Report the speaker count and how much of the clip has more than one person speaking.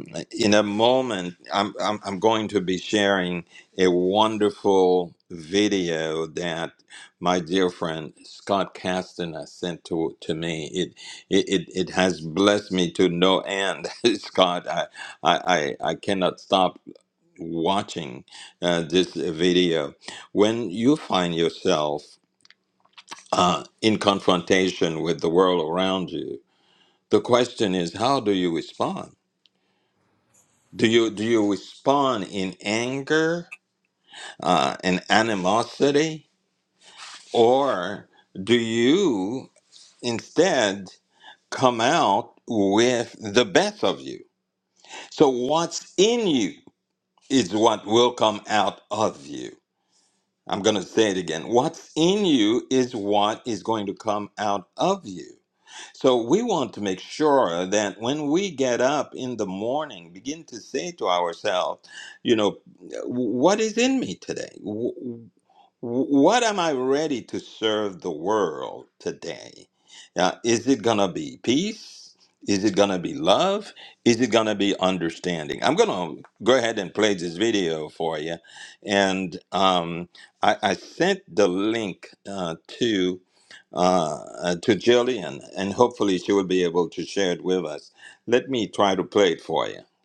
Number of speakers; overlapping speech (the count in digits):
1, no overlap